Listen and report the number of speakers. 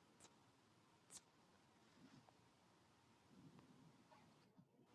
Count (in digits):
0